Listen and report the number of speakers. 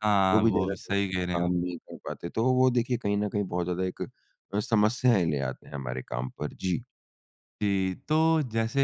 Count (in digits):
2